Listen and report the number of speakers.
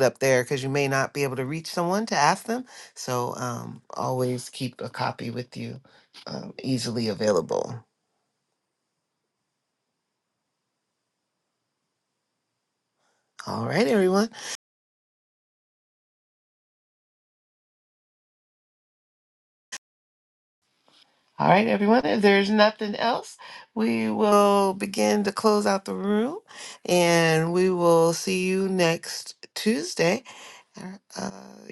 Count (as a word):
one